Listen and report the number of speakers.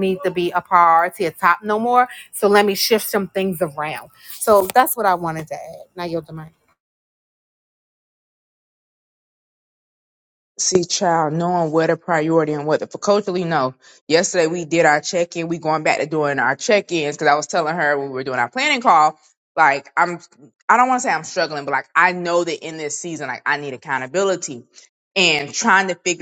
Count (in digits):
2